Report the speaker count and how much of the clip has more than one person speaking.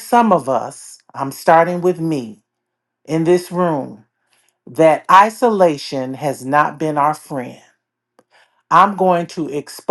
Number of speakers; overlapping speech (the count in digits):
1, no overlap